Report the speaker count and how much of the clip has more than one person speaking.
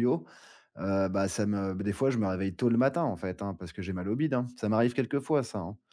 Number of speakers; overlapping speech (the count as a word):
one, no overlap